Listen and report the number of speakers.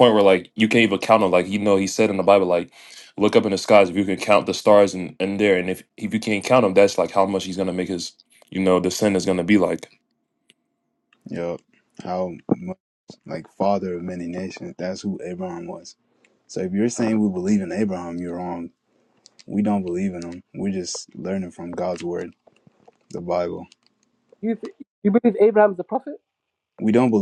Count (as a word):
three